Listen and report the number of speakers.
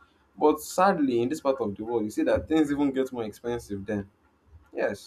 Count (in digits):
1